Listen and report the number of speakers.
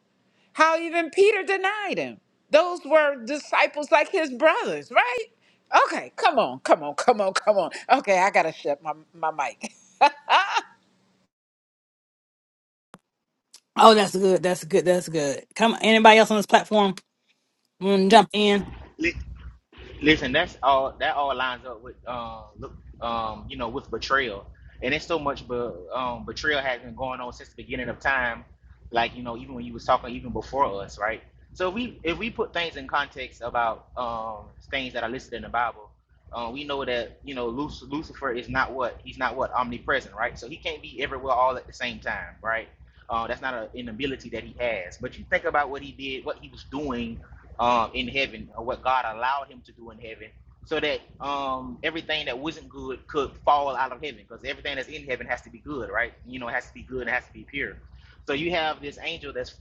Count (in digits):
3